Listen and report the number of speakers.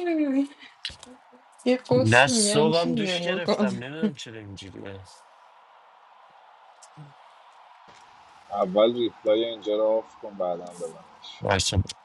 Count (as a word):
three